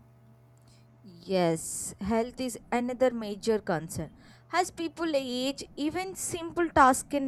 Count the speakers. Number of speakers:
1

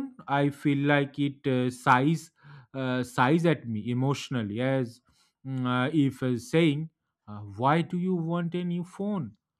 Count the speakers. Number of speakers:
1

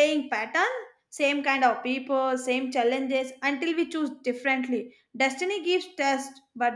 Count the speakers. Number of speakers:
1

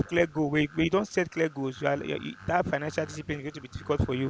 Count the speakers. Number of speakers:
1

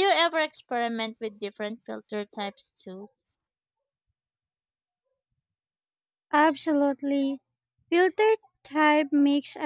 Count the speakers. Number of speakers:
2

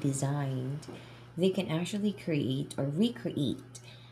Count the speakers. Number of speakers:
1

